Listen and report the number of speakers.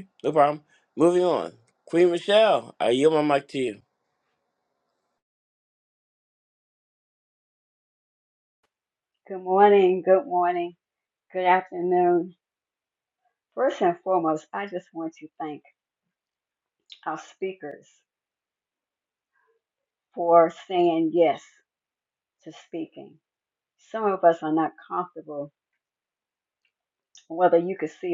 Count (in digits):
2